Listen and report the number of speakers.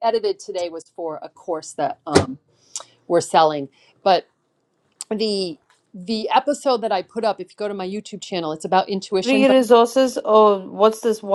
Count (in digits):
2